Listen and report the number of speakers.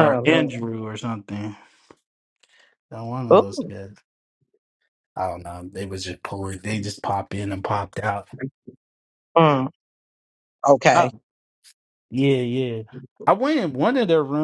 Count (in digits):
2